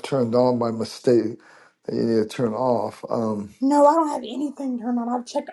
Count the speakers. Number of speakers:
2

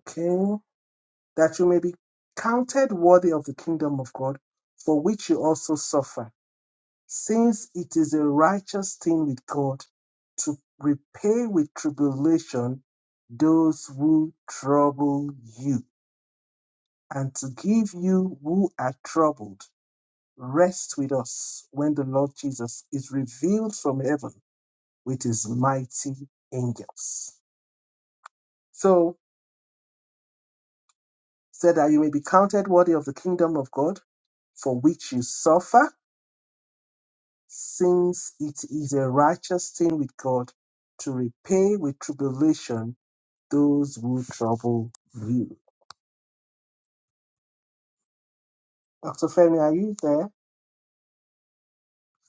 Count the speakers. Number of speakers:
1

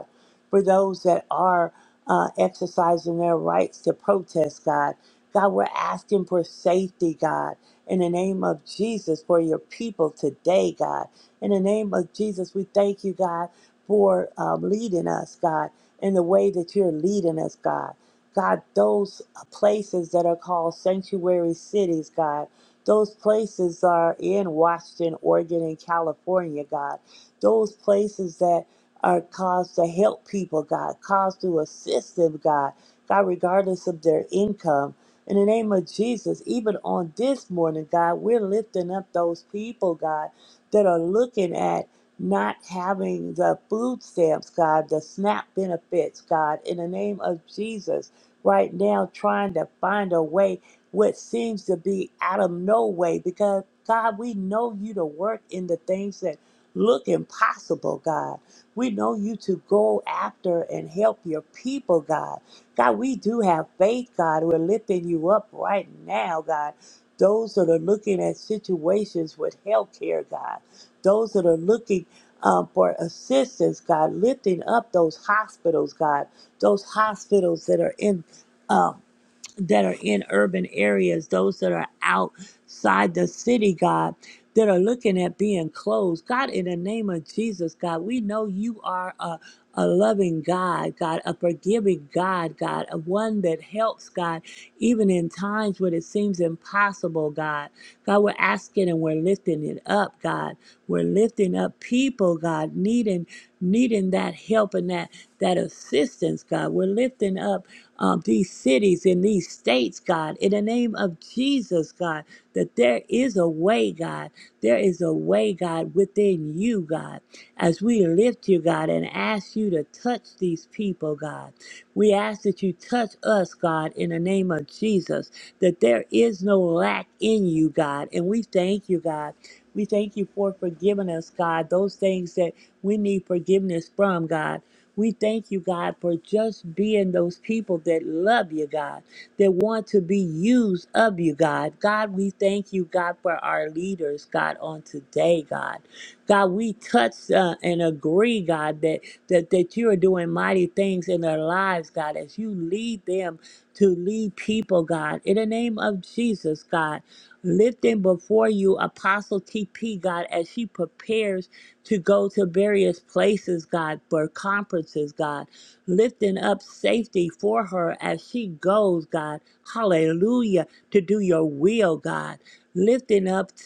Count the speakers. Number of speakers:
1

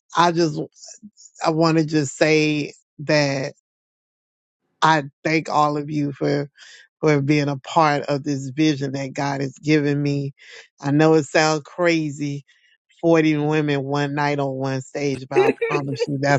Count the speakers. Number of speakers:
1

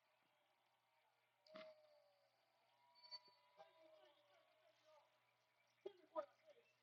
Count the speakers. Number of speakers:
0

